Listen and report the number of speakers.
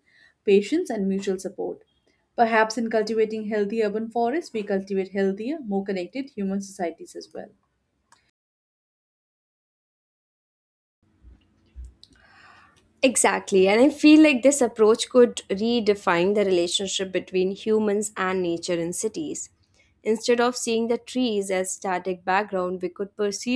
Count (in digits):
2